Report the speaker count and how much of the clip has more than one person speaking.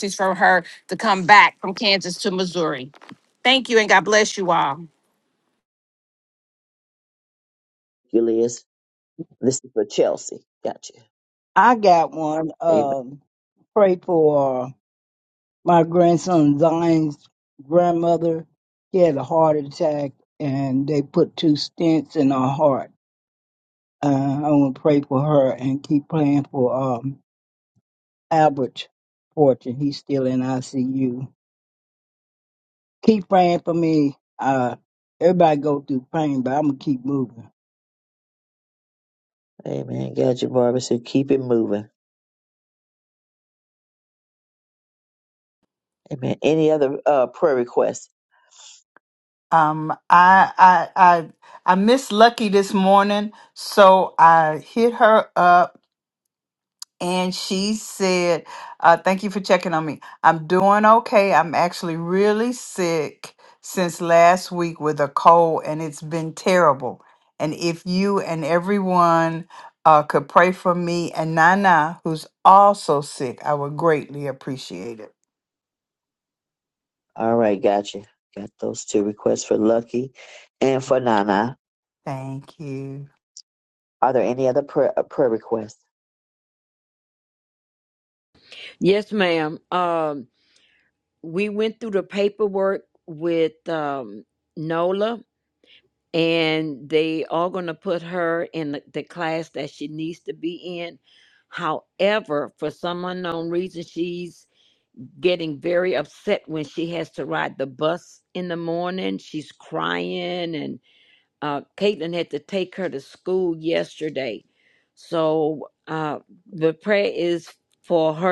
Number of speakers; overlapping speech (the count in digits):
5, under 1%